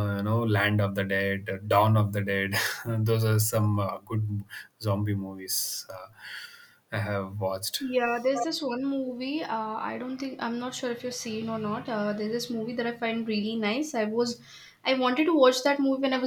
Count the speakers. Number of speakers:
2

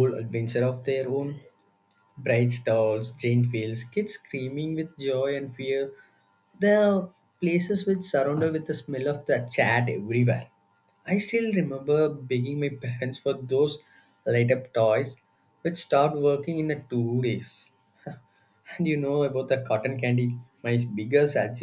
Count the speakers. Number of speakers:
1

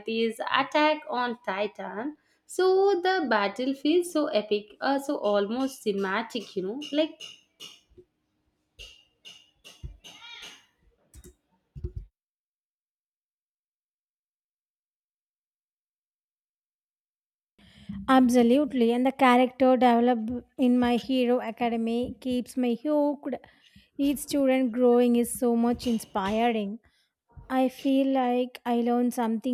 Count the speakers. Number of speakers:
2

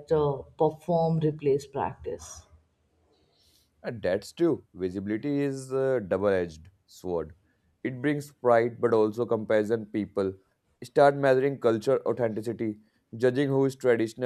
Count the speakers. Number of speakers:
2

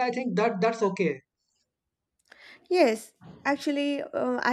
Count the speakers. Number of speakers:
2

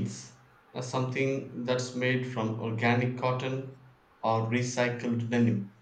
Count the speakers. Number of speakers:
1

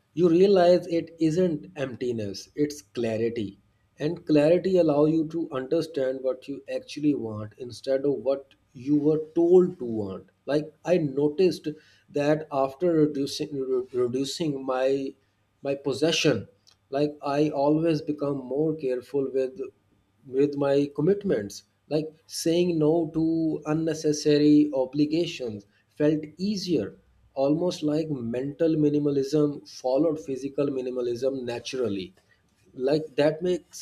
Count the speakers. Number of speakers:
1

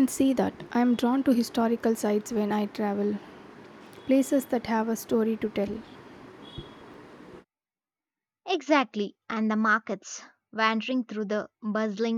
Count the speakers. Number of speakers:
2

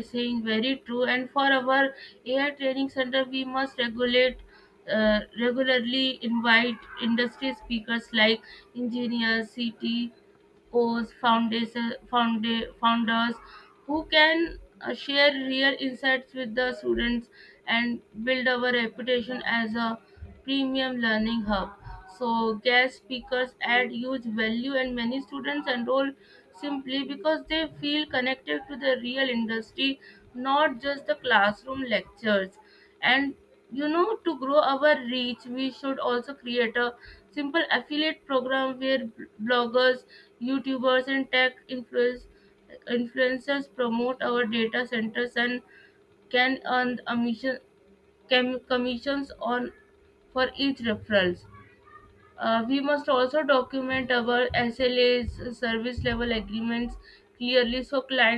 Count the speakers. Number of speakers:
1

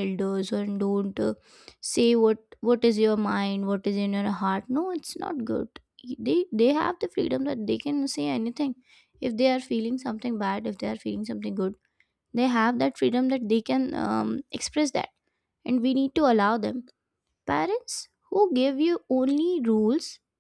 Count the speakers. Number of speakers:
1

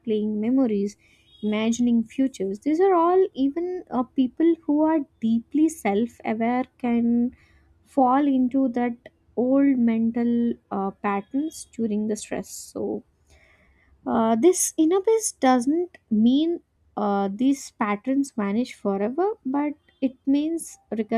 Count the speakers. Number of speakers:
1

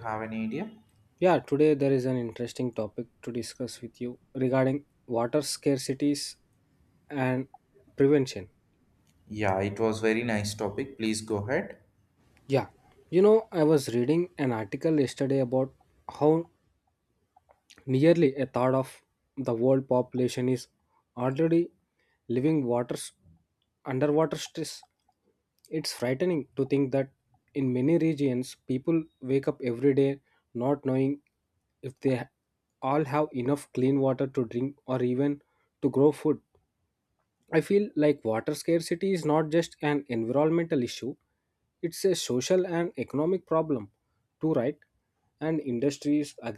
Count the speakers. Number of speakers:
2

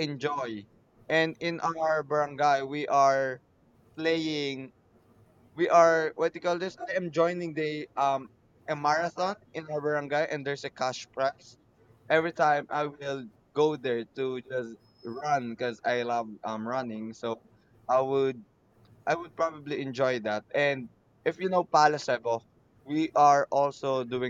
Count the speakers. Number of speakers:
1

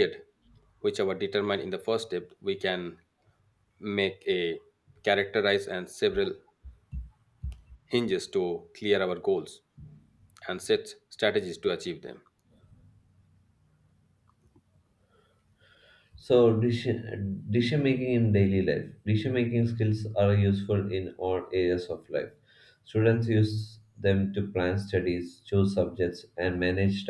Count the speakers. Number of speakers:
2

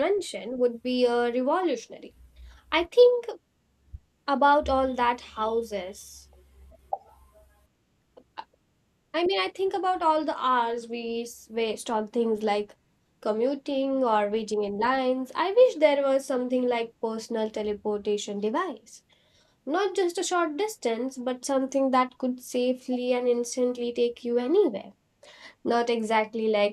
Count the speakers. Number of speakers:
1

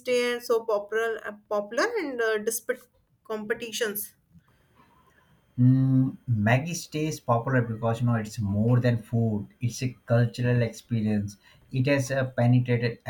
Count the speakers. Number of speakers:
2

